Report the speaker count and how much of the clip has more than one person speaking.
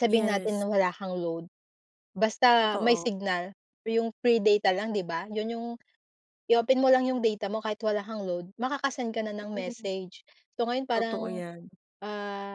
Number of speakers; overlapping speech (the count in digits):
2, about 10%